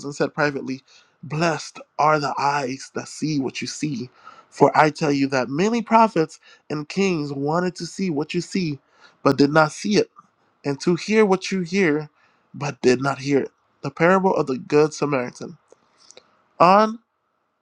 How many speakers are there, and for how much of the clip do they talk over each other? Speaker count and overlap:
one, no overlap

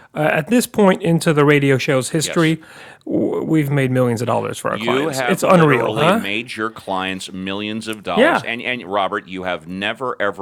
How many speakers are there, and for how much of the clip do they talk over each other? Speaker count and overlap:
two, about 22%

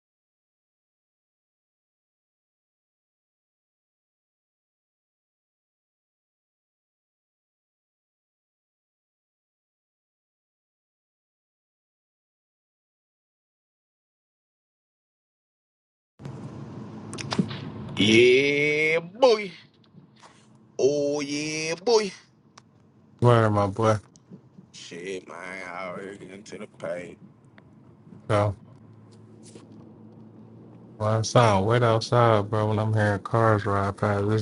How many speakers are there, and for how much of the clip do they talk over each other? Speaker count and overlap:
two, no overlap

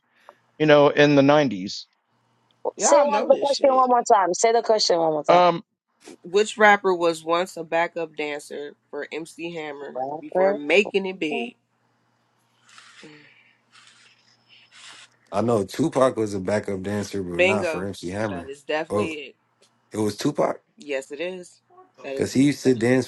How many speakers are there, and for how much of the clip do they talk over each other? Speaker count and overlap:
four, about 14%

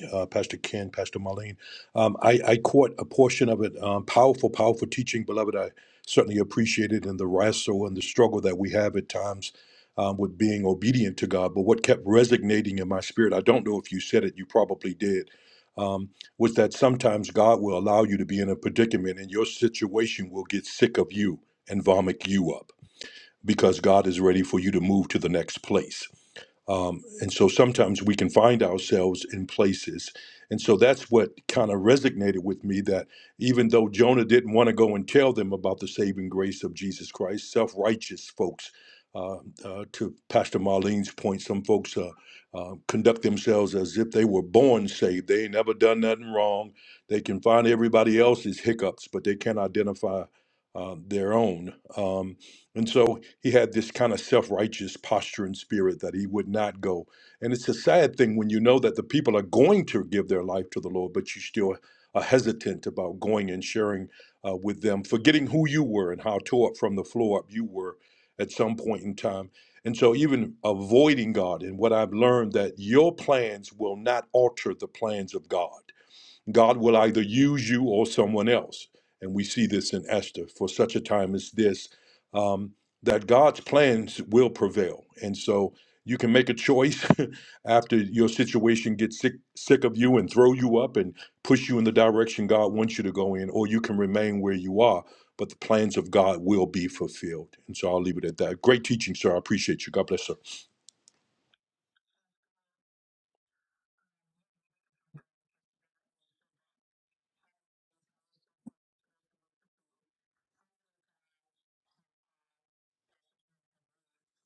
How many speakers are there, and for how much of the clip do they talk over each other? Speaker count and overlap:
one, no overlap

